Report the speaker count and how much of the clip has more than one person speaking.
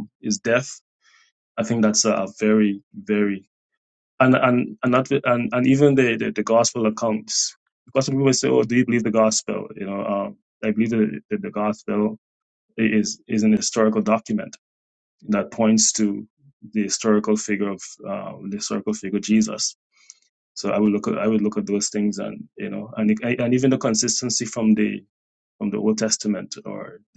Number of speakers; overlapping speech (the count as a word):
one, no overlap